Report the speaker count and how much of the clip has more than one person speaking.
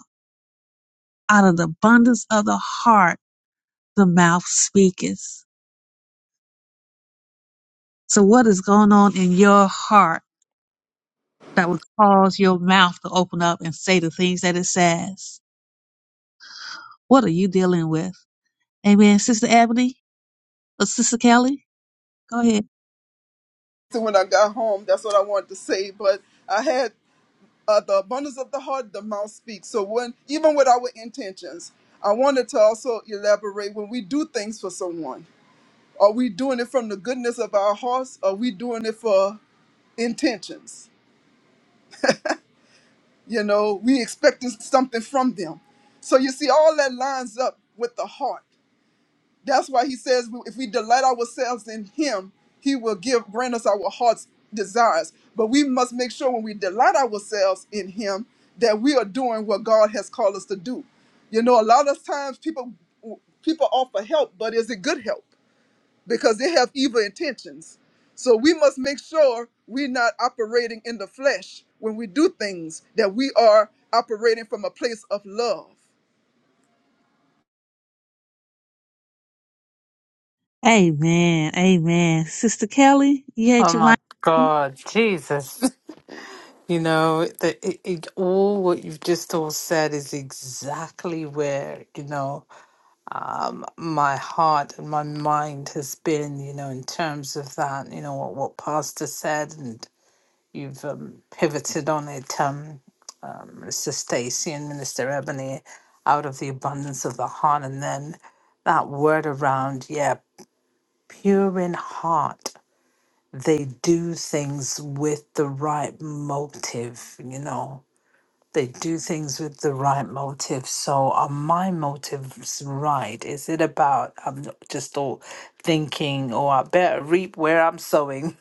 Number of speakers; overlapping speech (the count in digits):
3, under 1%